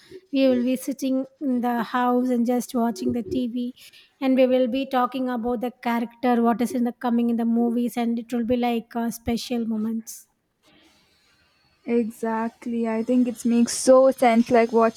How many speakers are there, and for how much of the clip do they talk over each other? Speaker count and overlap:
two, no overlap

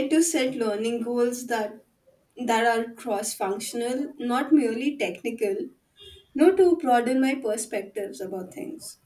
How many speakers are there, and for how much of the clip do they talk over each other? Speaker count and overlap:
one, no overlap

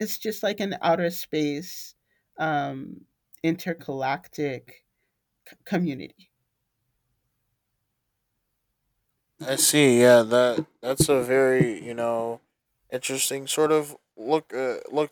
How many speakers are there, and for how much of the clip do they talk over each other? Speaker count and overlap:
two, no overlap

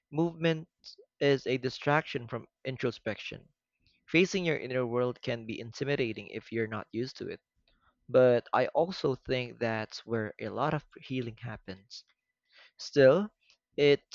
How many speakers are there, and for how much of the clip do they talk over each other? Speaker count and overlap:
one, no overlap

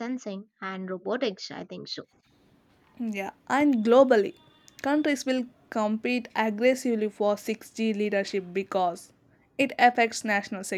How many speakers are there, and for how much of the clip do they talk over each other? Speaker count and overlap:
two, no overlap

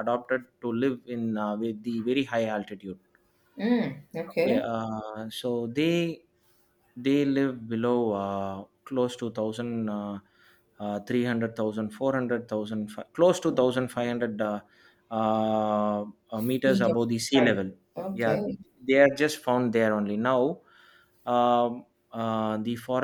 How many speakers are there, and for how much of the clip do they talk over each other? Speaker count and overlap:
two, about 5%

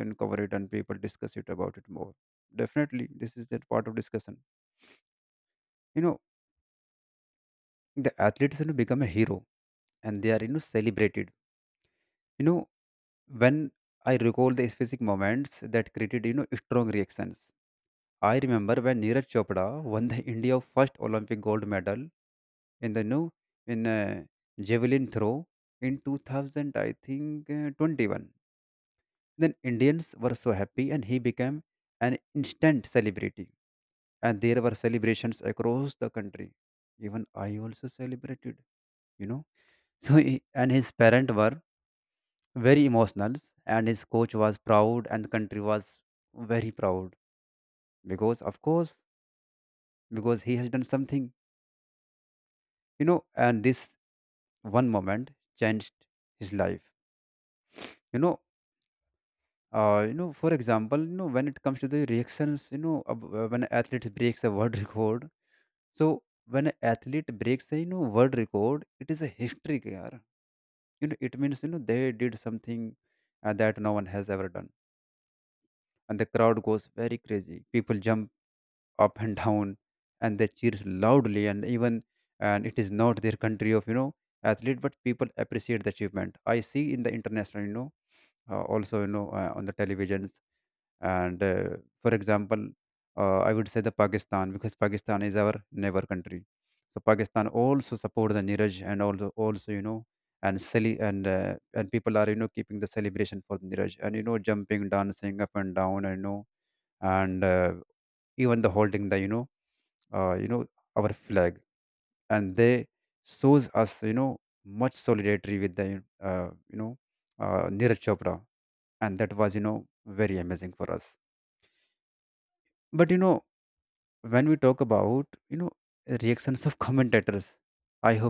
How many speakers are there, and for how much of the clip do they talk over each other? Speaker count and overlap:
one, no overlap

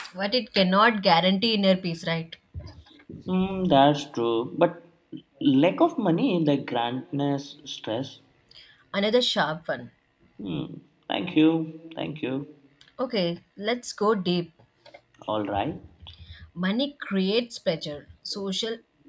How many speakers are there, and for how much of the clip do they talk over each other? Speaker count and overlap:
two, no overlap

